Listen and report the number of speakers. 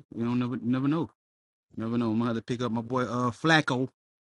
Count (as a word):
one